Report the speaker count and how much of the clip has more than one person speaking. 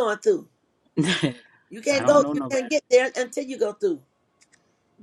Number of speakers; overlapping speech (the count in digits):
2, about 16%